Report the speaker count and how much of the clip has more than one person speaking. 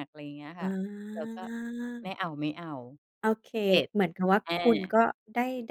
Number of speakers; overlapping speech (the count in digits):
2, about 8%